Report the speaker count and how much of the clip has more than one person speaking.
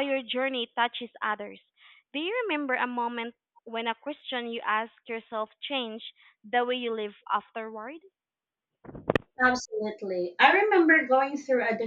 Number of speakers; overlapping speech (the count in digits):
2, no overlap